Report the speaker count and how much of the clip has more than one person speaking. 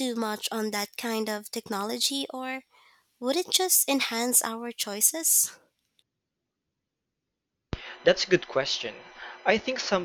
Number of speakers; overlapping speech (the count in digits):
2, no overlap